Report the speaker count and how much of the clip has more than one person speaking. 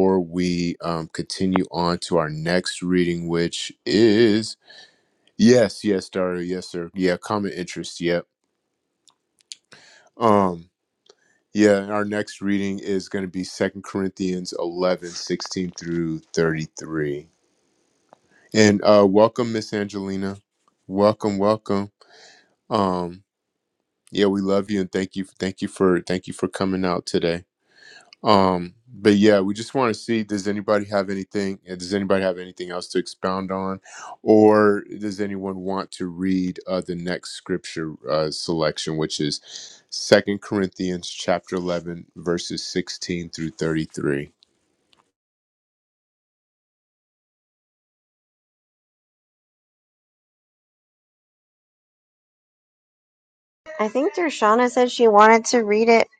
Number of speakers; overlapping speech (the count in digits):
2, no overlap